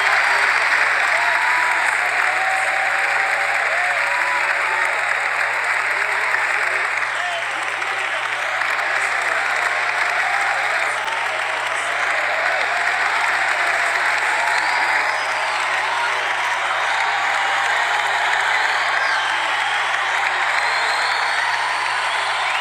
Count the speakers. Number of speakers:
zero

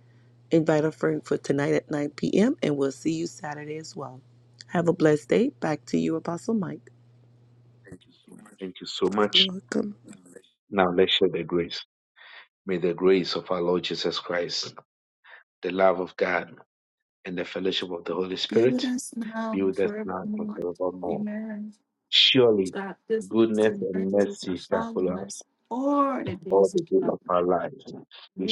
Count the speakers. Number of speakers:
three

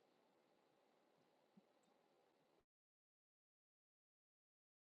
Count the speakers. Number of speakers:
zero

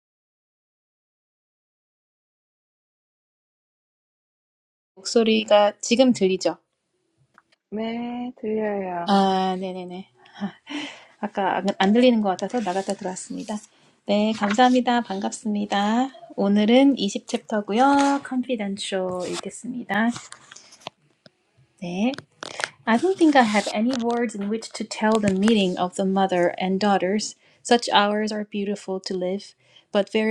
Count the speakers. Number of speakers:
two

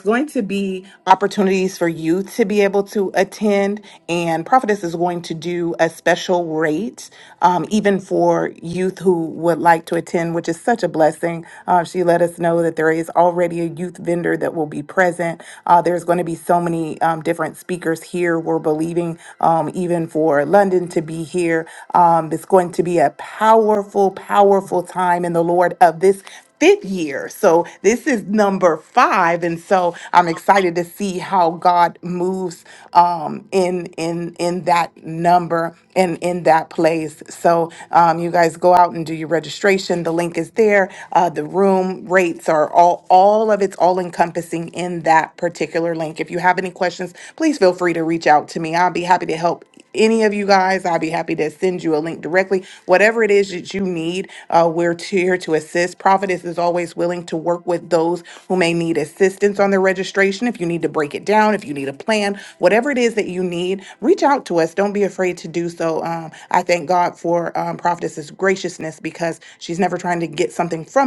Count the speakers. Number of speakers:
one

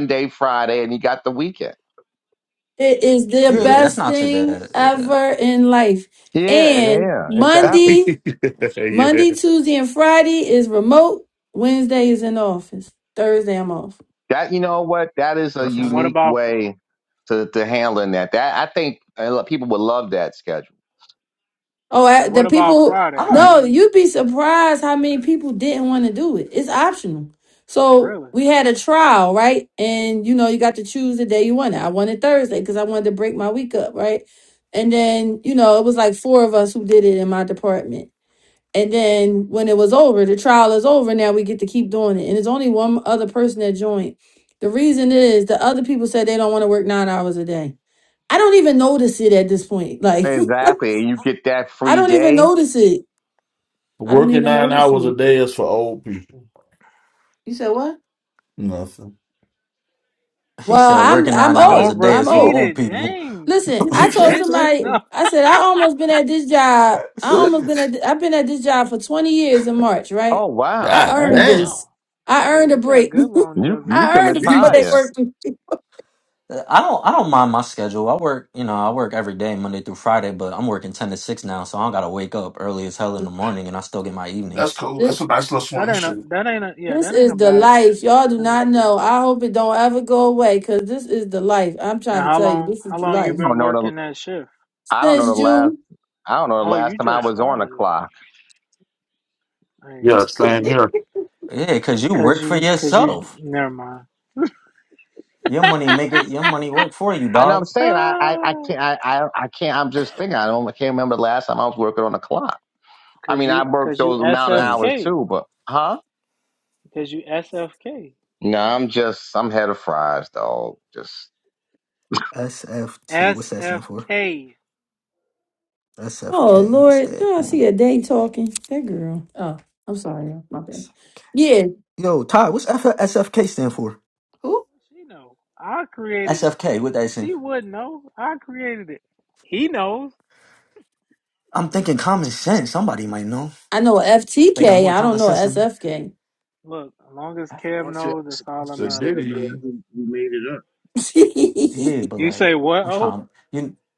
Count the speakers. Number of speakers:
seven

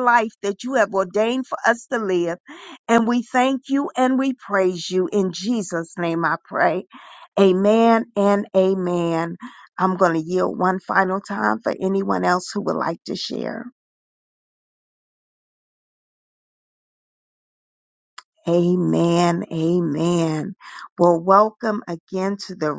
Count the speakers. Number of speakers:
one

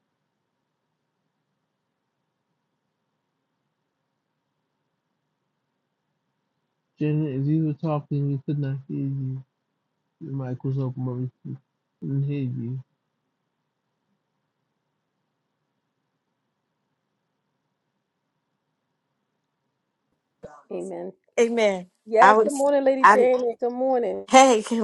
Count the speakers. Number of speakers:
three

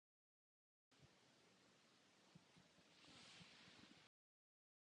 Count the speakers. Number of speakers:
zero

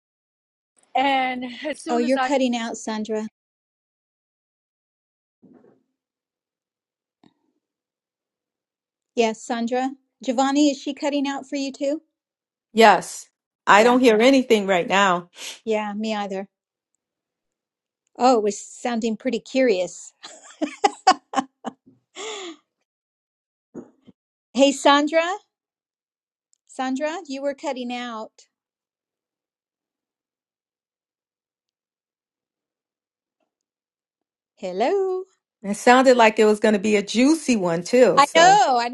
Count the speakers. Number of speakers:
three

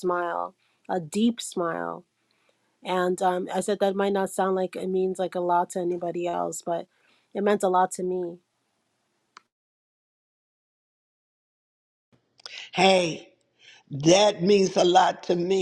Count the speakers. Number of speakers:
two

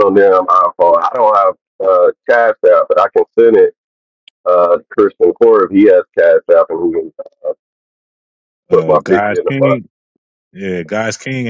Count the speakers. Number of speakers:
two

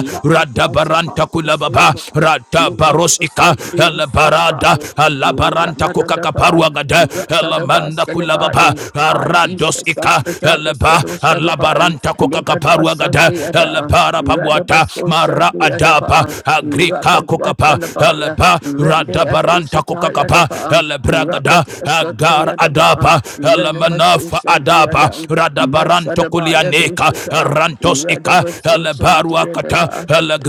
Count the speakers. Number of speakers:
two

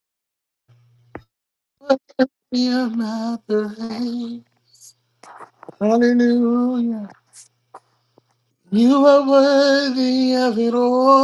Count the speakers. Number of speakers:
one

